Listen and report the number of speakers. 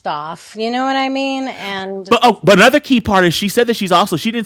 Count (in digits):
2